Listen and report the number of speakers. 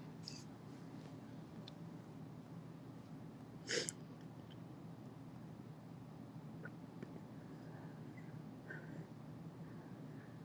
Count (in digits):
0